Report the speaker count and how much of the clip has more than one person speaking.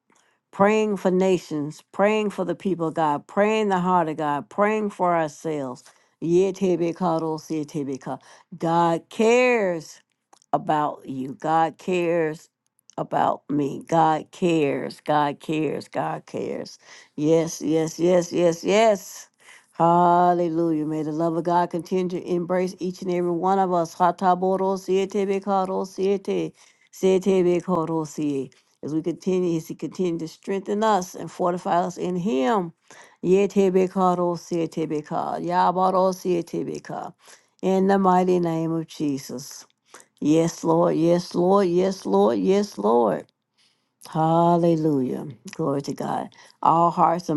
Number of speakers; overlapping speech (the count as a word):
one, no overlap